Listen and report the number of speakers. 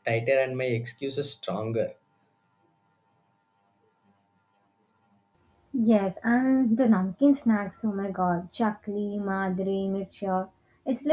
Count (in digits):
2